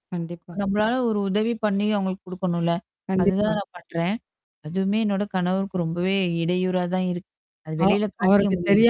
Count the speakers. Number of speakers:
two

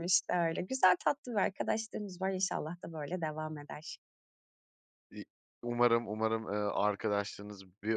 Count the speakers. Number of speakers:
two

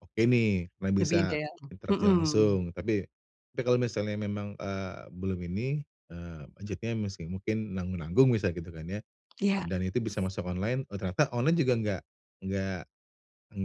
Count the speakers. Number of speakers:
two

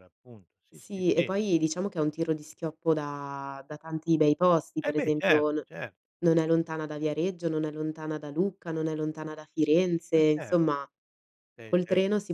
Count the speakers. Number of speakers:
two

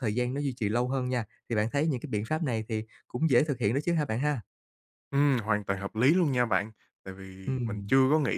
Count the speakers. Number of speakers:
two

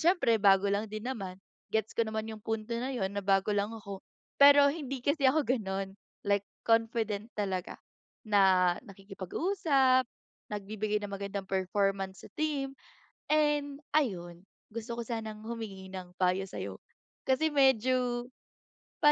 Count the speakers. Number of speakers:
one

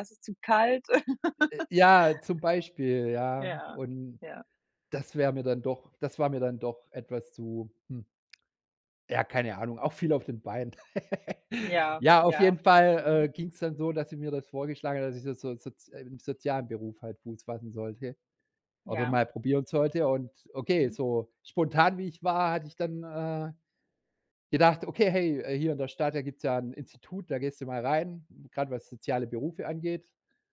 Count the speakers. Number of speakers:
two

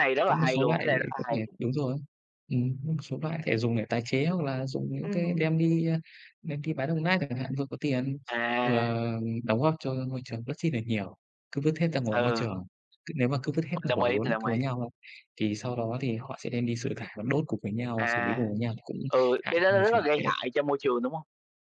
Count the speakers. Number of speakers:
two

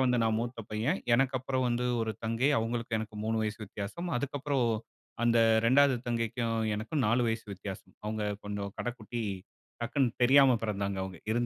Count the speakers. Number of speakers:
one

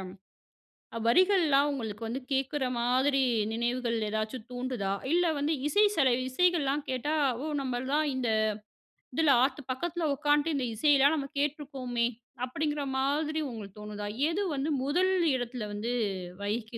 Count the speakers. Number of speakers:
one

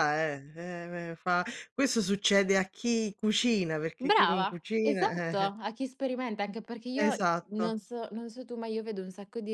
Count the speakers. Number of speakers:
two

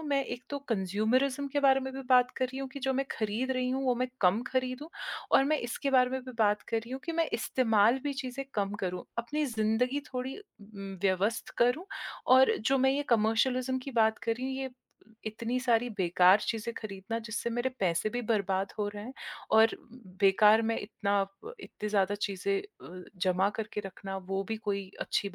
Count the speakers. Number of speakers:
one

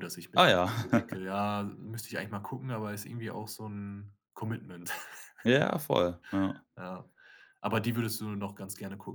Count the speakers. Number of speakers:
two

